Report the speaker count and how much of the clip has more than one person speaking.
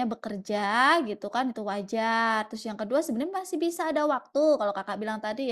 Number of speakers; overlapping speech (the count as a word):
one, no overlap